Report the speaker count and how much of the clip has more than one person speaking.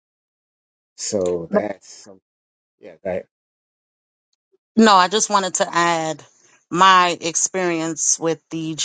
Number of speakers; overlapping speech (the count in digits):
2, no overlap